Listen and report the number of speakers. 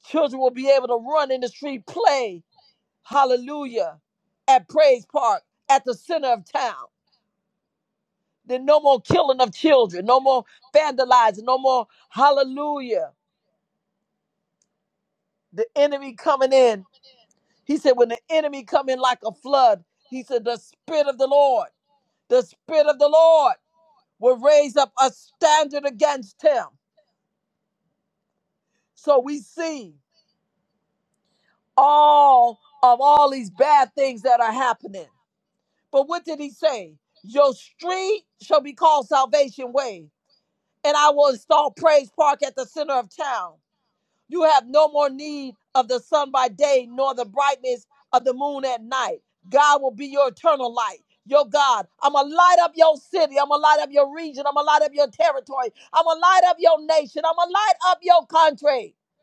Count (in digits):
1